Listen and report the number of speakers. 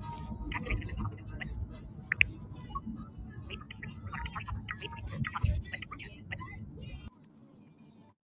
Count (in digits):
0